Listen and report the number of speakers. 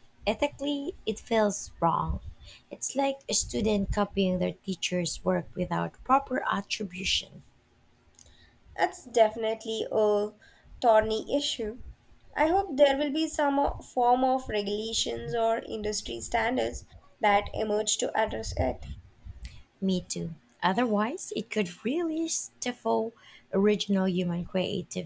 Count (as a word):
two